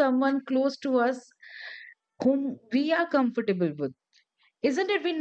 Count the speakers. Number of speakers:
one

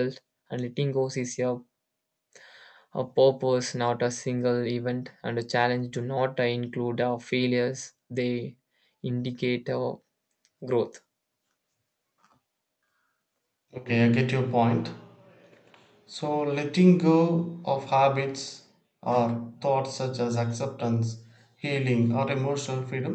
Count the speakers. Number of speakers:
two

